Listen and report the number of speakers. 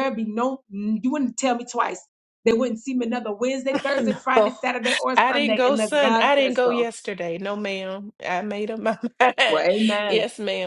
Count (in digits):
2